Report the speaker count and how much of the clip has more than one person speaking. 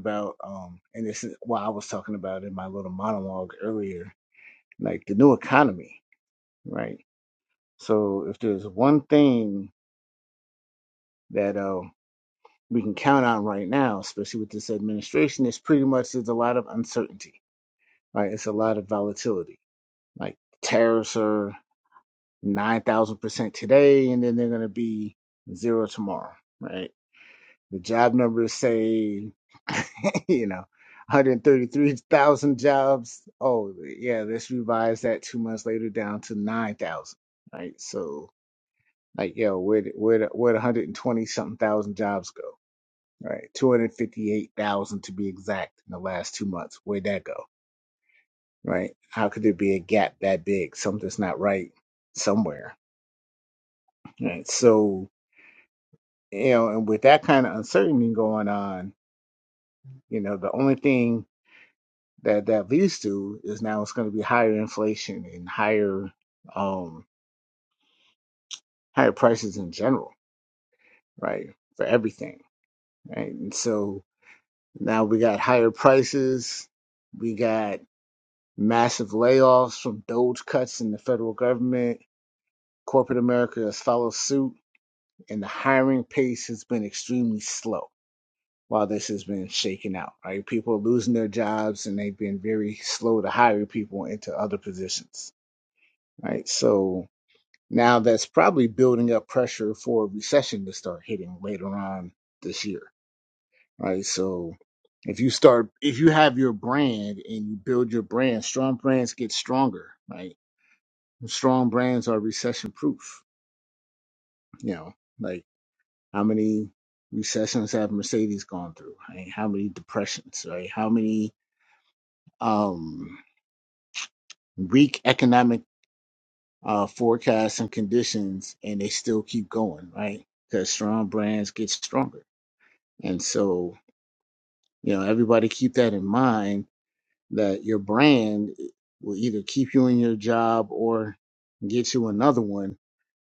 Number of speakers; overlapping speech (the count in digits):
1, no overlap